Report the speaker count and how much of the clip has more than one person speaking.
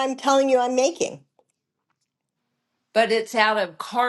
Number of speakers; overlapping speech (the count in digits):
2, no overlap